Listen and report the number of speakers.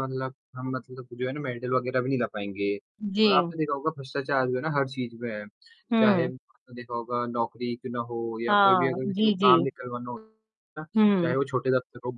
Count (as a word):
two